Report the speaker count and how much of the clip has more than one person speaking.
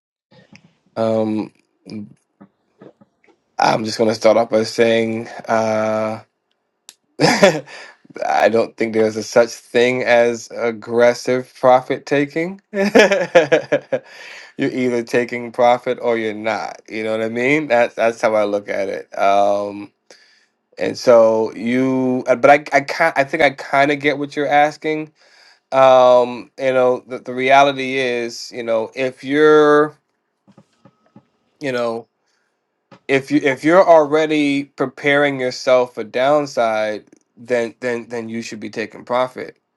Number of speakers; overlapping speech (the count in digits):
1, no overlap